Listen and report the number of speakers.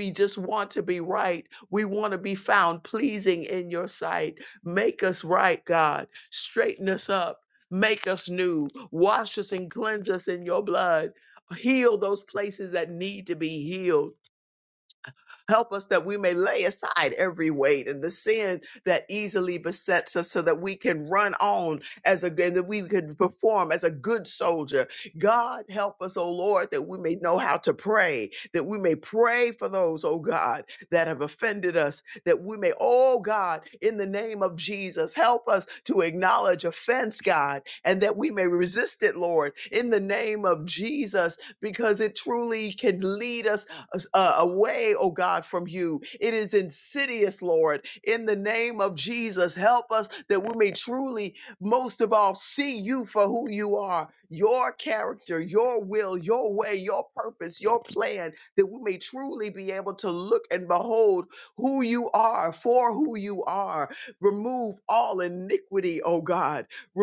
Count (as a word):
one